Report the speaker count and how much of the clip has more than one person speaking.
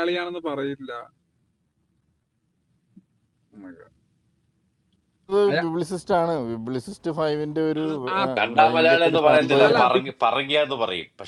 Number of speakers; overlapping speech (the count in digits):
3, about 17%